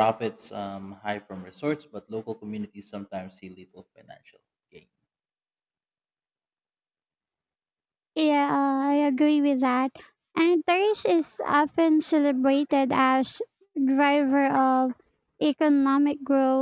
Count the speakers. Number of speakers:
2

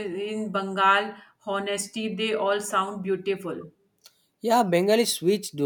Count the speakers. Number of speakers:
2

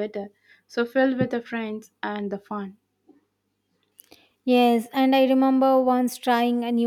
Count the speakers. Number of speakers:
2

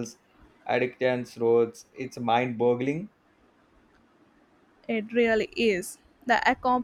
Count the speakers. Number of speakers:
2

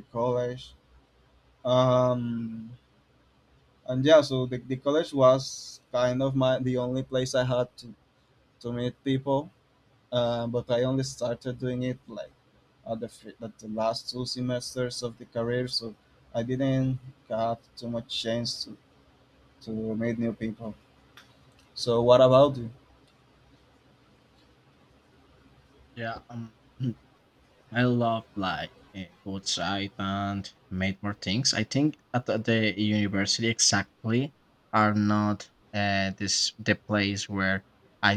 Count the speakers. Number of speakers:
2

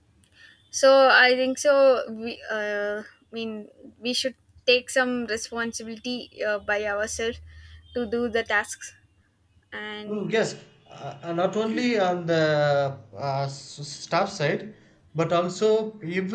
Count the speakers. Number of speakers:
2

